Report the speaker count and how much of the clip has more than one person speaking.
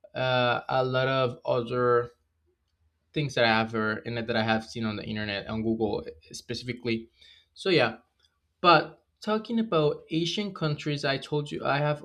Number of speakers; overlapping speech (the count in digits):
1, no overlap